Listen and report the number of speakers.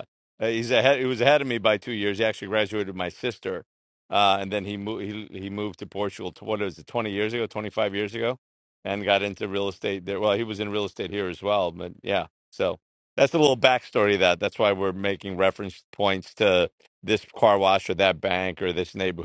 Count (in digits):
1